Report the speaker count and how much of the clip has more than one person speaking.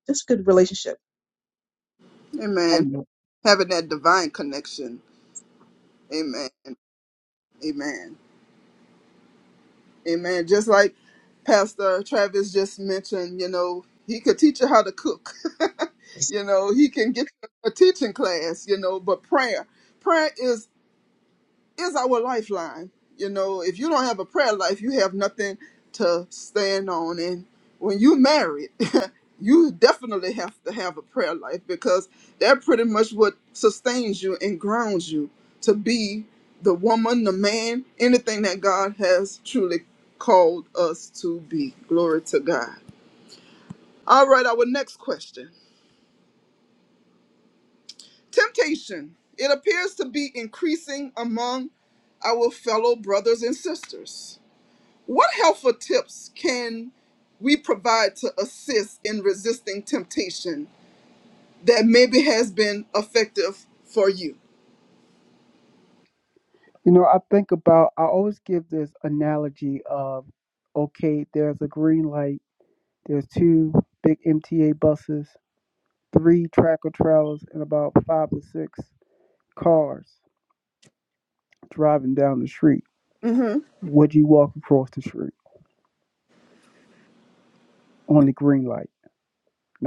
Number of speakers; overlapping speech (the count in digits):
3, under 1%